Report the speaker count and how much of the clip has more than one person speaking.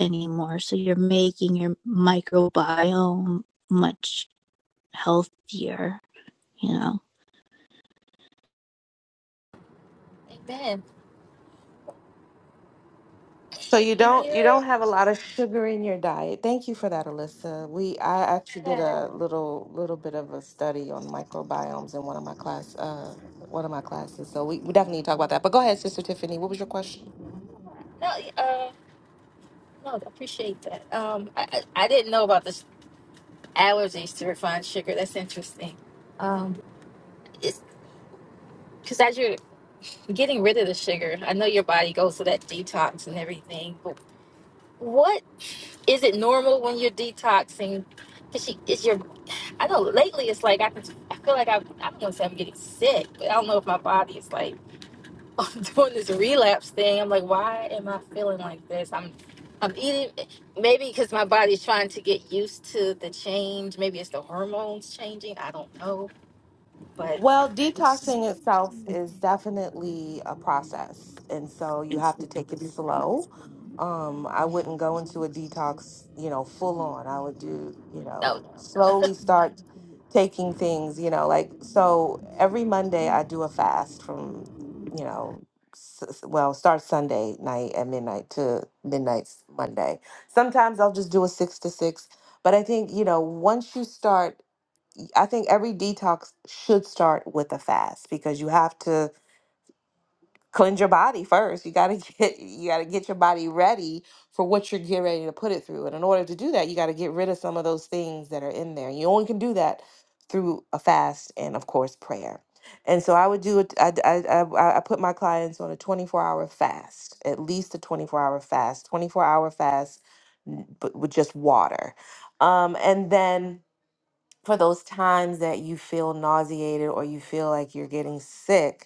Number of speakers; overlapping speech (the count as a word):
three, about 1%